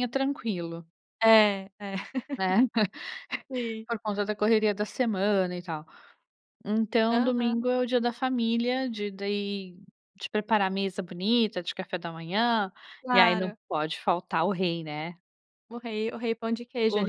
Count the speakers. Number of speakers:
two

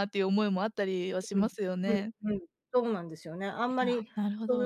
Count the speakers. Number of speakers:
two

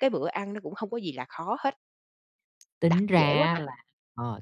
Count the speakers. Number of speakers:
two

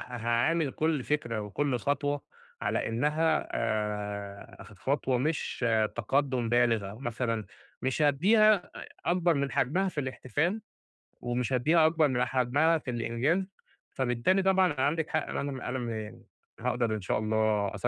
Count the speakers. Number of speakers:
one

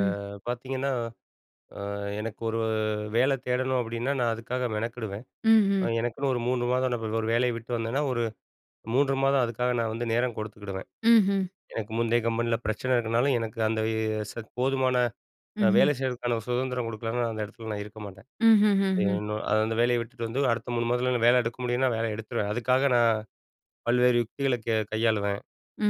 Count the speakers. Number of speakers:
two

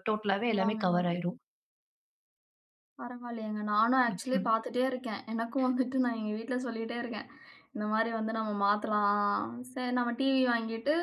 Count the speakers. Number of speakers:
two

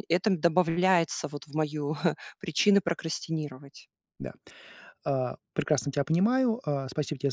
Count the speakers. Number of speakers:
two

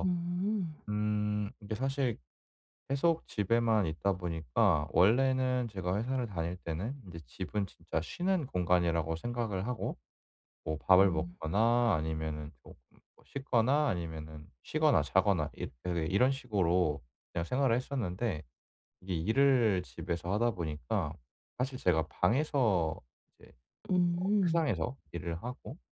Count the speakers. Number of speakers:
two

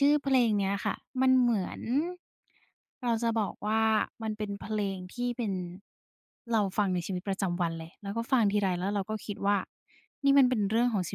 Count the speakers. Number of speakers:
one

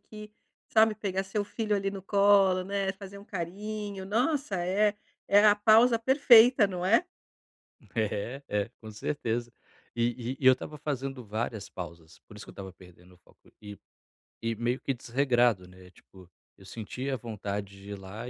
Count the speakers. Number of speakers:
two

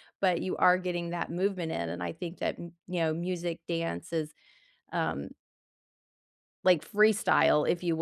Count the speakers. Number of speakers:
one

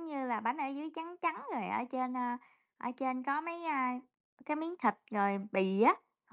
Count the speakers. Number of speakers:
one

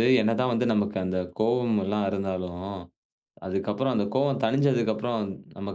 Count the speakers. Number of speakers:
one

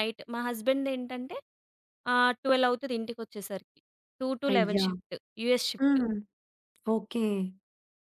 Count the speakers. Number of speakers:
two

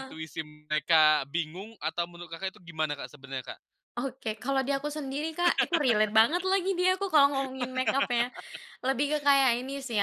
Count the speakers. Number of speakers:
two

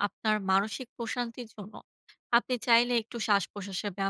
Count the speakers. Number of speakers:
one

